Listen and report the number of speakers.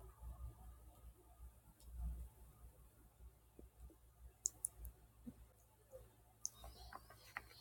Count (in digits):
0